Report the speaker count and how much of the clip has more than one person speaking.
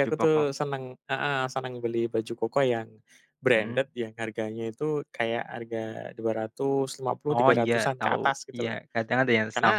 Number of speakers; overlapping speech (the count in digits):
2, about 18%